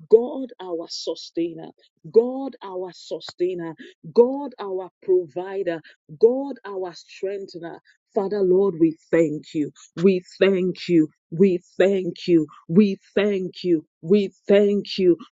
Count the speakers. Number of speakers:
1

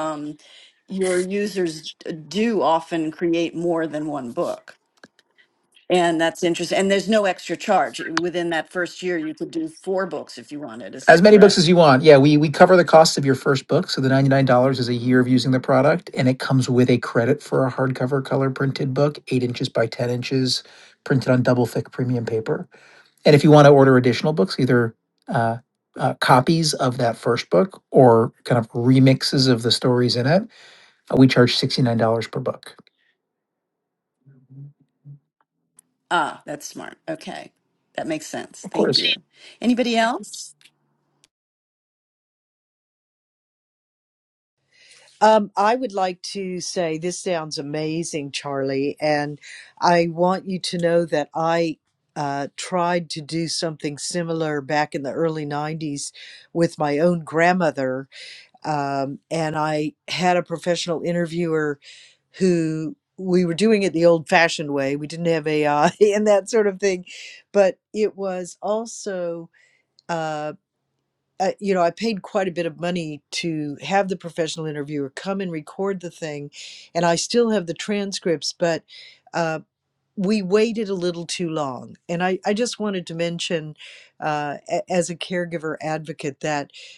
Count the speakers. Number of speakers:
3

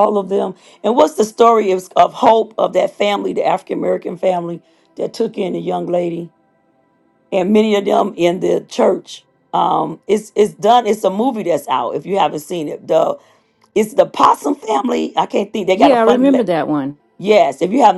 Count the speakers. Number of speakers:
2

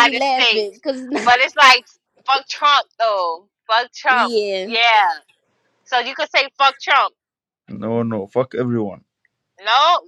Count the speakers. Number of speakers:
3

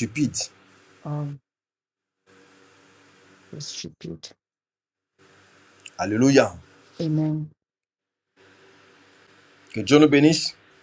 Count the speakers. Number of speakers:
2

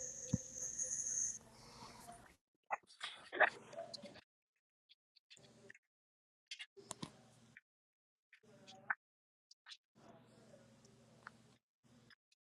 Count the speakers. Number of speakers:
0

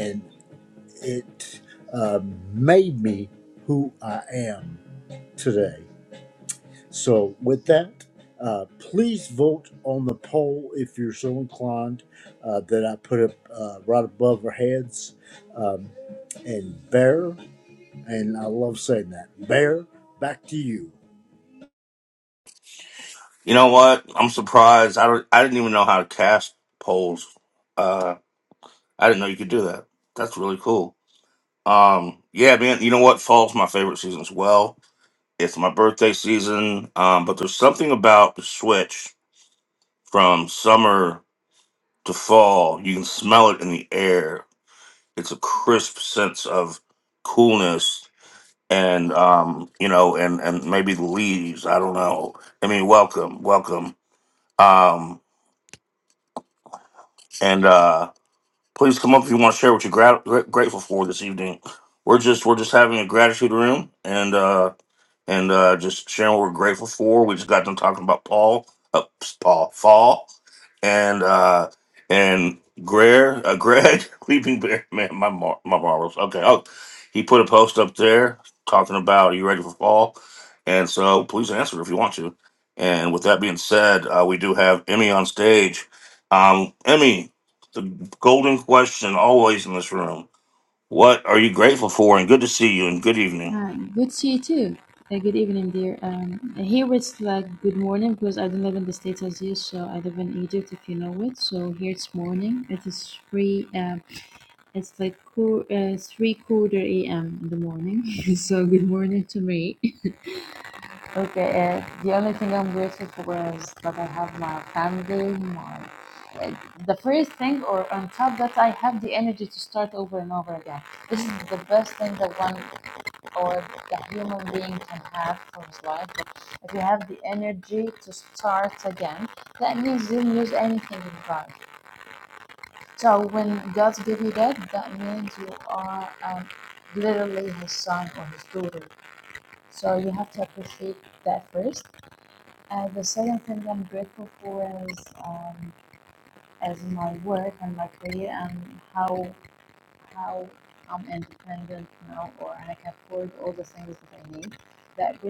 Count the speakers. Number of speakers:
3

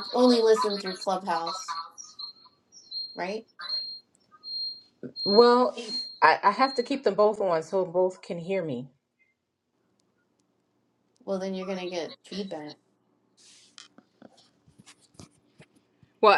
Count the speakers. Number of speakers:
2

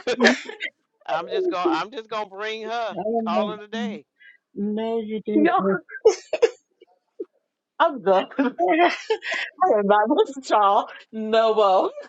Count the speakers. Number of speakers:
3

